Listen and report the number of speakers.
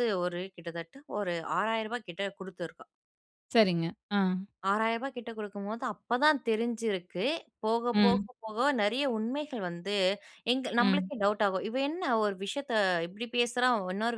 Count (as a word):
two